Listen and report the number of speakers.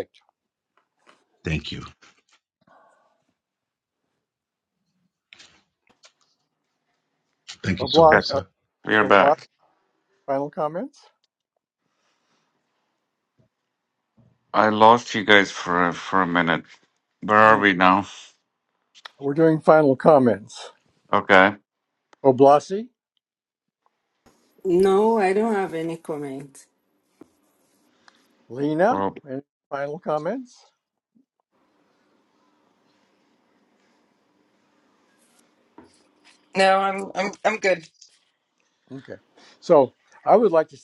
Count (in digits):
5